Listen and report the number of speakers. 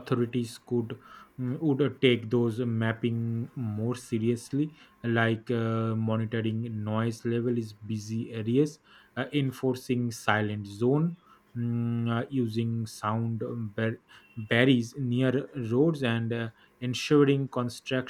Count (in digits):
1